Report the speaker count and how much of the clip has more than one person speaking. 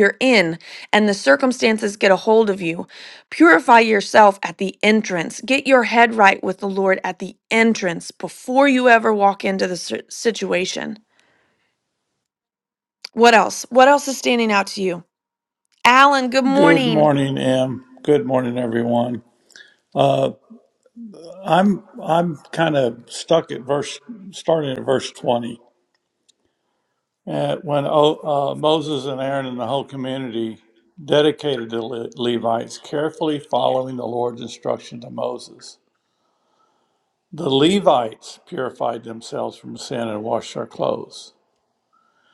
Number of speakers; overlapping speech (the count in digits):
2, about 1%